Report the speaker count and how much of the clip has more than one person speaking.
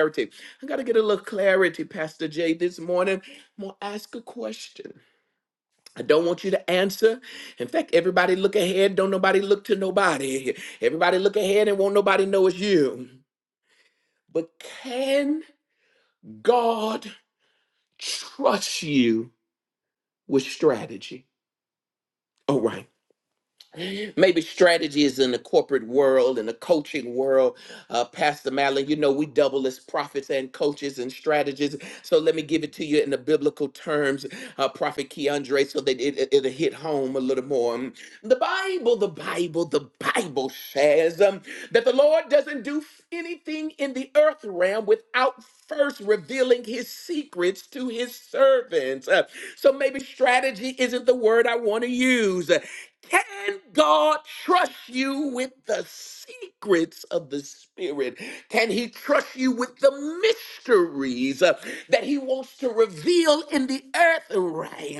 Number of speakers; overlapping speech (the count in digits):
1, no overlap